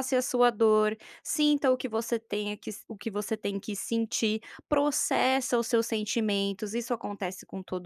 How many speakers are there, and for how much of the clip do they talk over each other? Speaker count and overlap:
one, no overlap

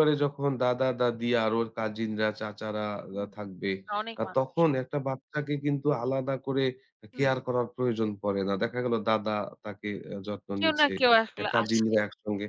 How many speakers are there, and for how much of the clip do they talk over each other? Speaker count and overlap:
two, about 14%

